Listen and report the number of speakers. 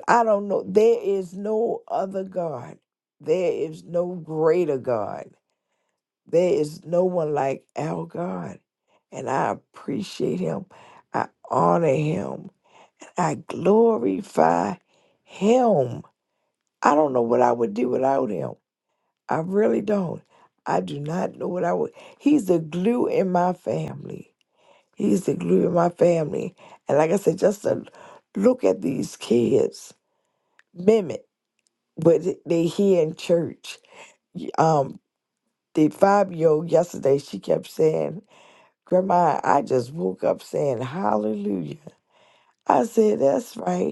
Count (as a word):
one